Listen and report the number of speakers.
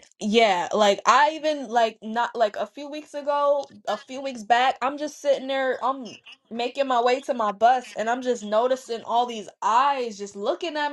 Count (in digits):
1